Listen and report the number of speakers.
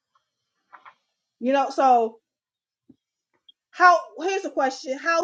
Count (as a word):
one